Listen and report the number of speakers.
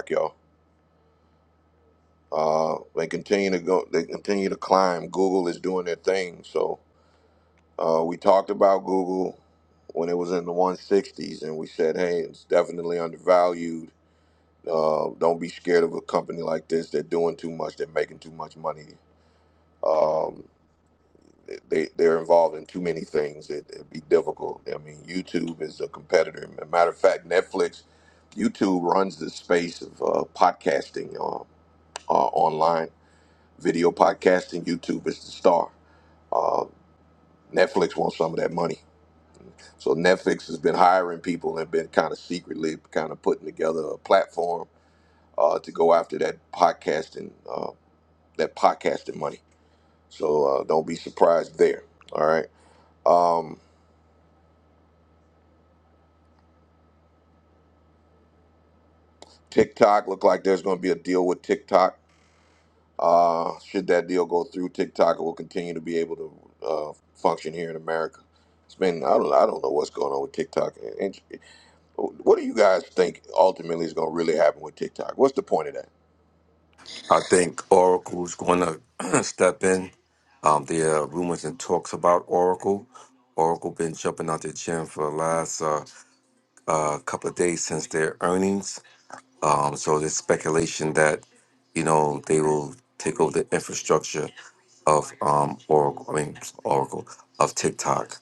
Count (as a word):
two